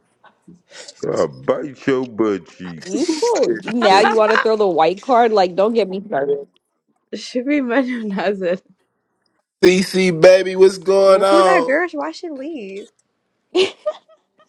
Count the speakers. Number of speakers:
4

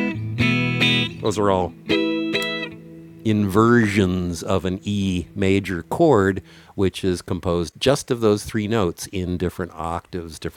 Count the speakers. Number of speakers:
1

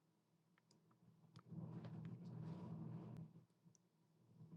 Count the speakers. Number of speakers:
0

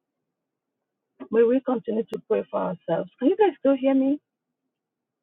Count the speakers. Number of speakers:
1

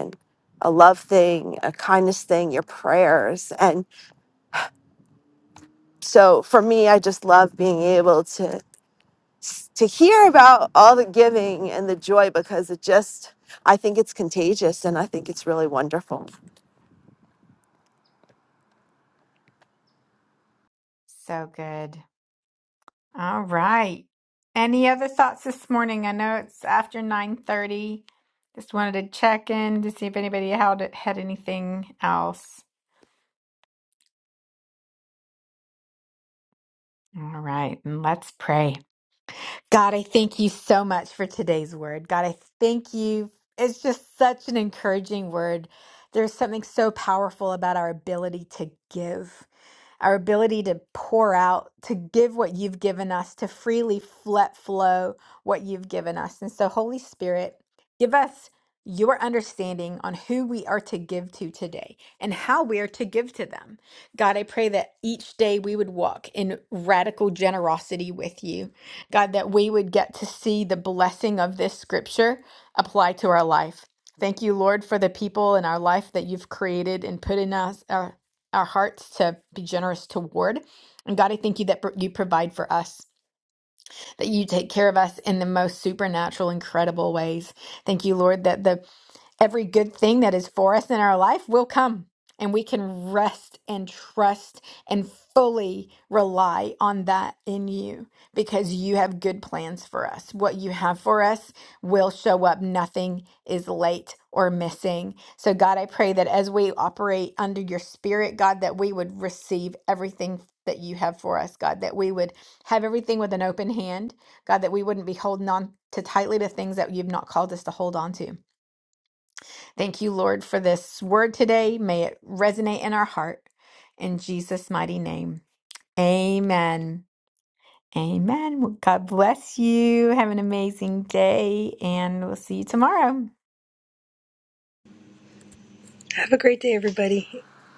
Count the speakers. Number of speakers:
3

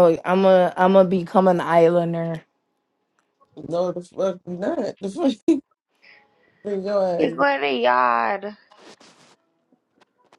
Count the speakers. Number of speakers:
3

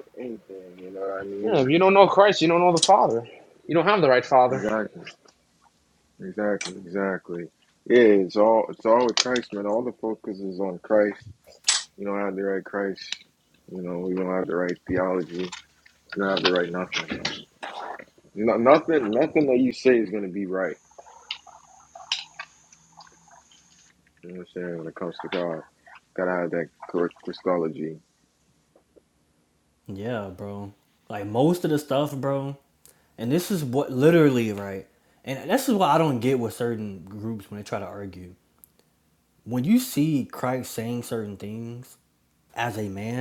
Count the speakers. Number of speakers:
3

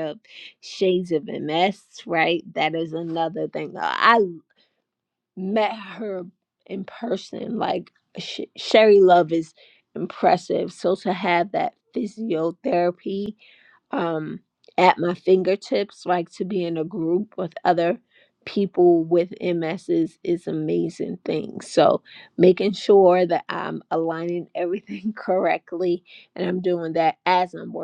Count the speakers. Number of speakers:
1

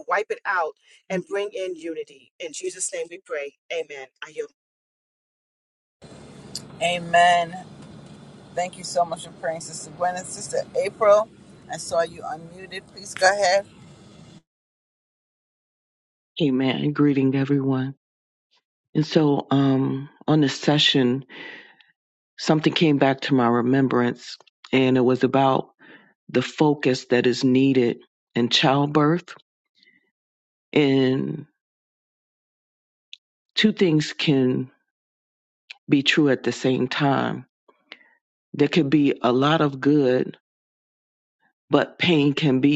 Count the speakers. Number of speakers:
3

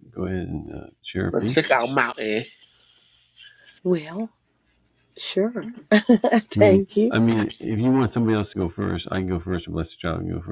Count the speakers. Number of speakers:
3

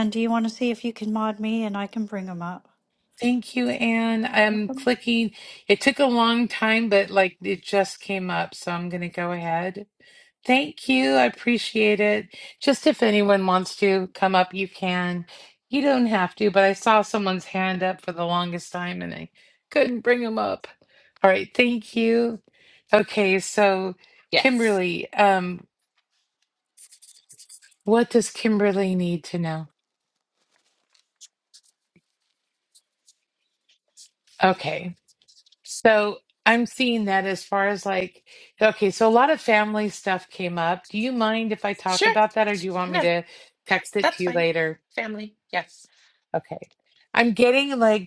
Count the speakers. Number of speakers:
3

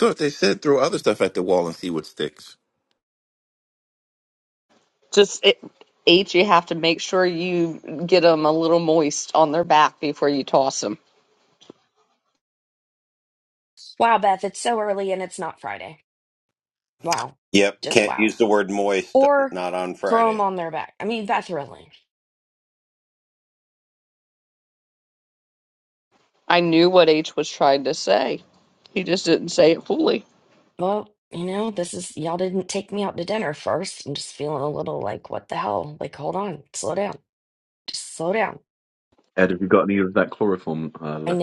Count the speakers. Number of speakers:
5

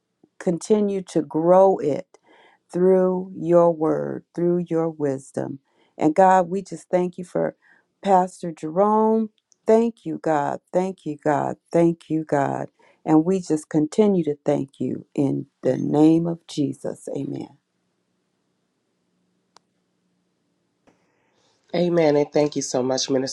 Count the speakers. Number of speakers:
2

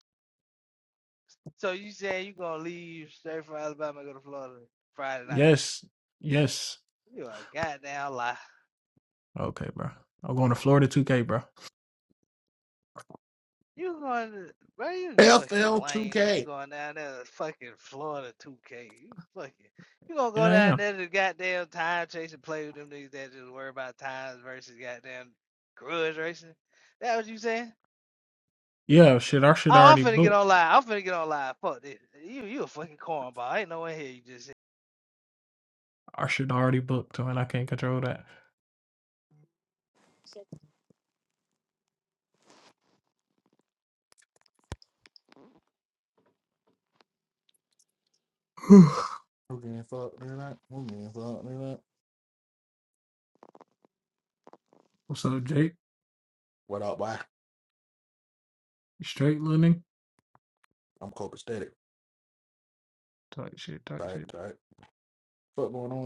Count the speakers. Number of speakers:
3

